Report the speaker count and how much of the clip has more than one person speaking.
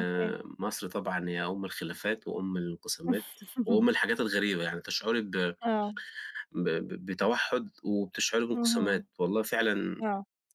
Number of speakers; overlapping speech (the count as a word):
two, about 5%